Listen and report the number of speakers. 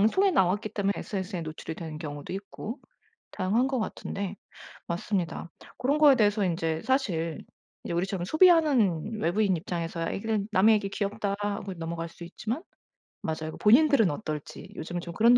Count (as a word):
one